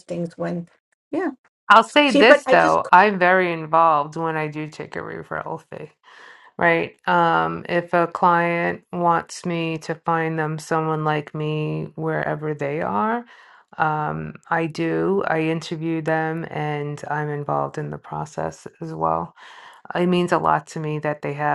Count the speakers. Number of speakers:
two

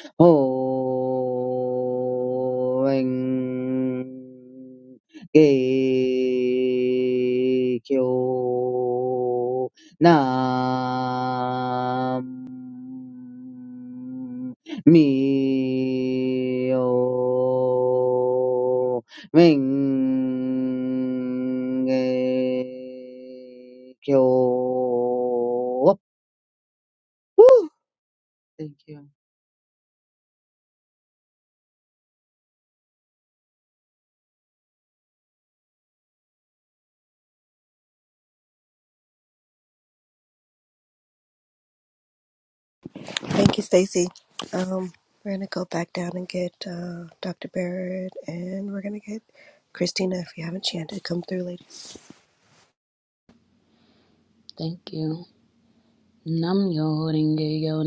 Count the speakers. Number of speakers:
three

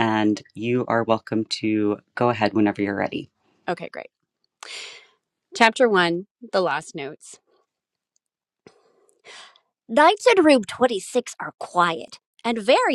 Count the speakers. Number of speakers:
two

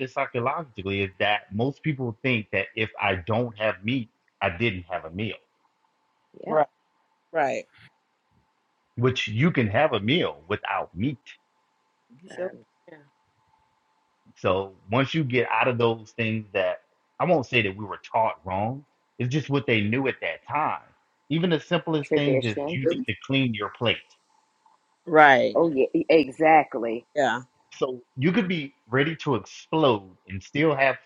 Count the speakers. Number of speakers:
three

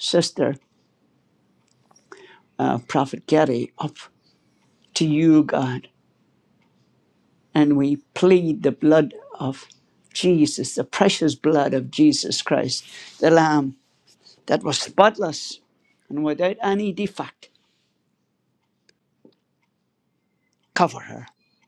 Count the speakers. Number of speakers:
one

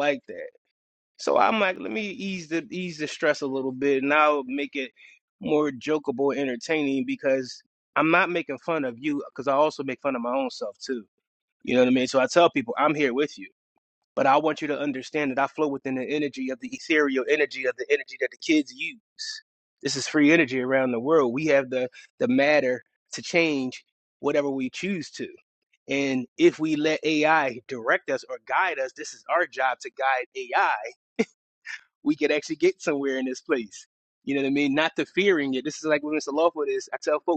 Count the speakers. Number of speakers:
one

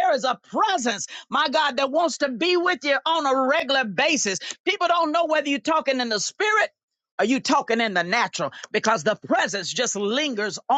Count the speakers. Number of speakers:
one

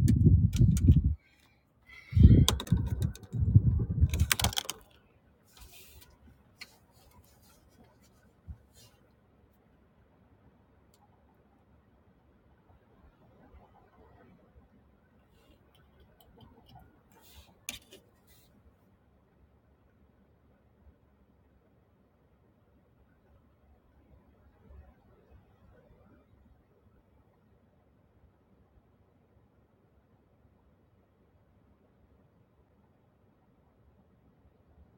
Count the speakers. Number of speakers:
zero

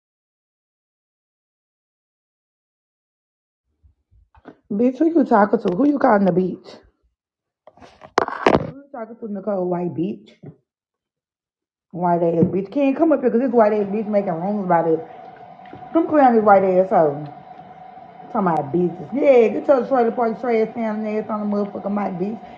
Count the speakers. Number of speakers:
one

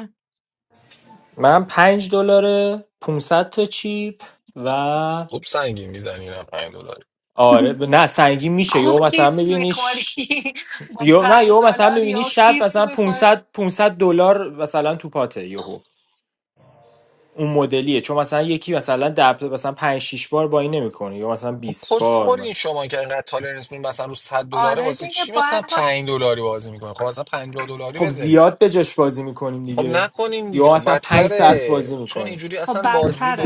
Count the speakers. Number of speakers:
three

